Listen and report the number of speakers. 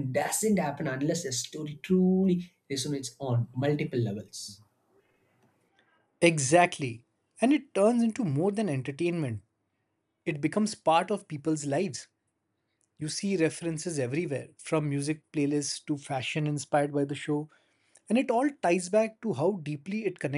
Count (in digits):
2